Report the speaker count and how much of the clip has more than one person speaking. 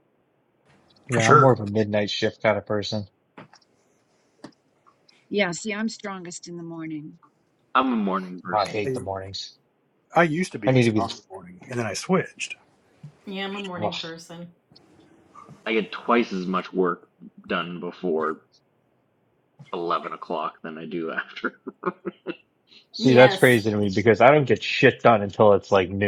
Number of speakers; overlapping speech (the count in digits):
5, about 7%